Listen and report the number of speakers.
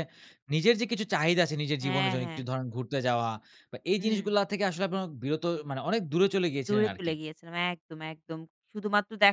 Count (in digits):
2